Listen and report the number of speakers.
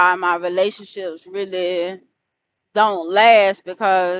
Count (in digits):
1